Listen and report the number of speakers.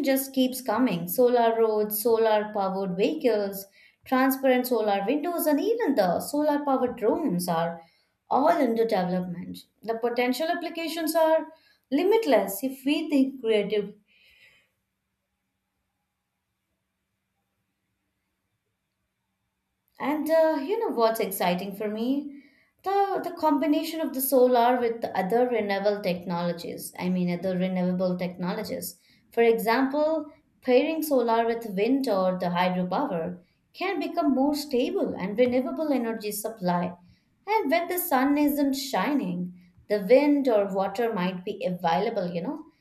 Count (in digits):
1